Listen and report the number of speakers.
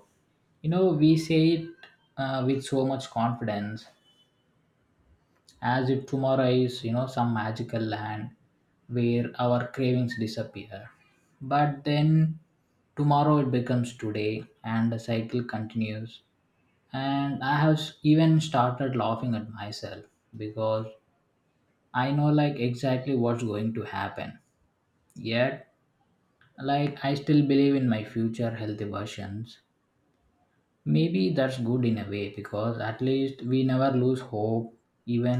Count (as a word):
one